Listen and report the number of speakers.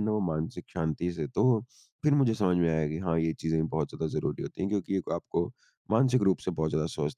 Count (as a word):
one